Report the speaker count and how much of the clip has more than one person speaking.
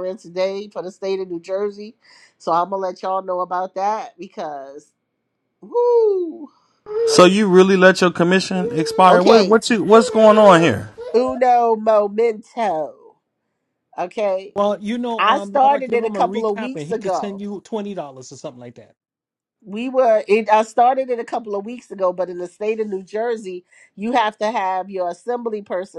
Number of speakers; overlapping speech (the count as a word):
three, about 10%